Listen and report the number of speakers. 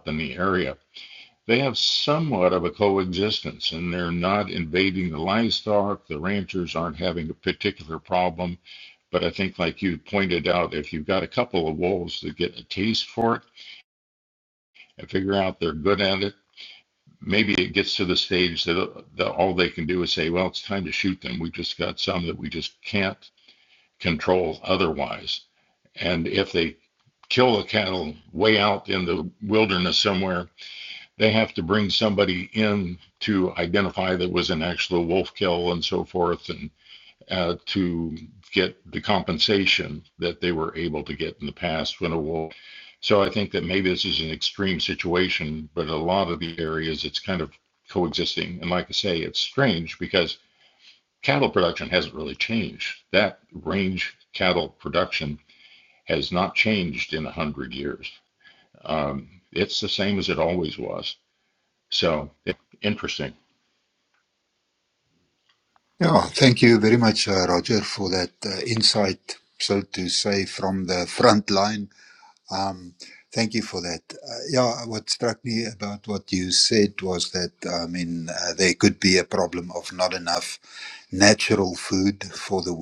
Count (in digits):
2